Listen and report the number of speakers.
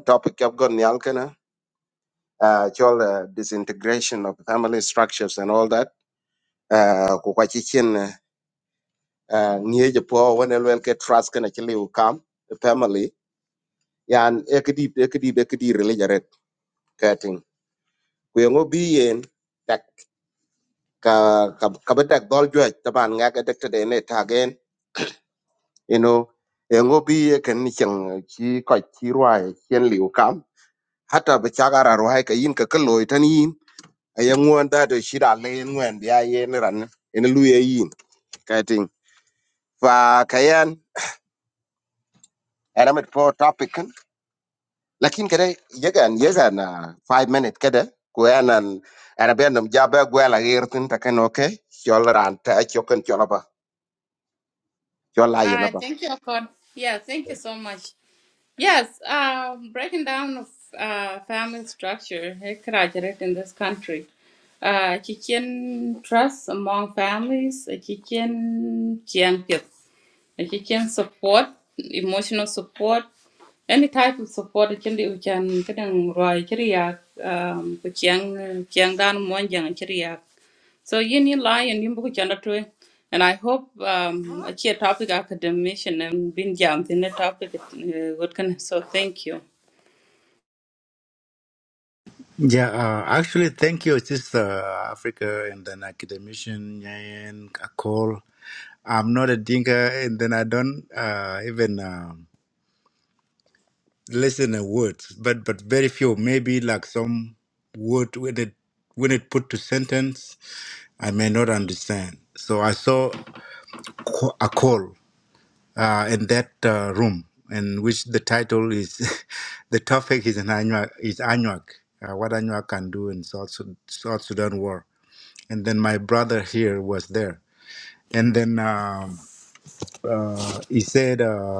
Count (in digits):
3